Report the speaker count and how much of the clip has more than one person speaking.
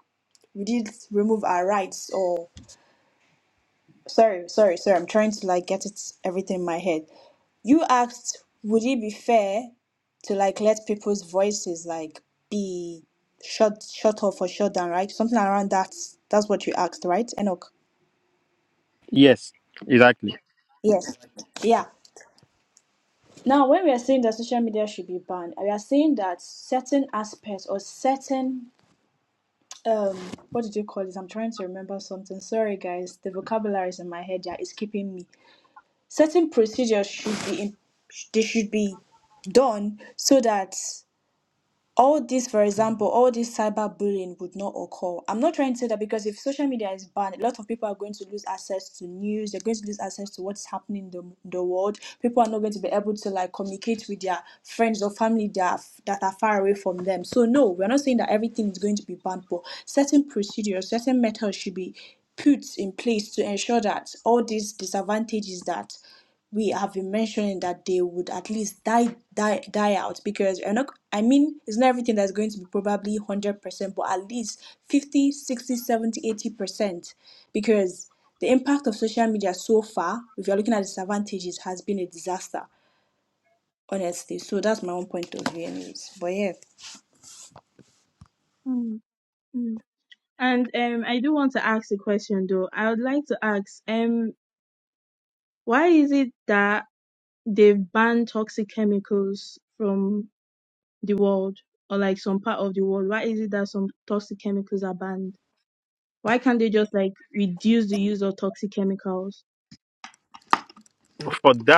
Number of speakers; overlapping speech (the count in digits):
3, no overlap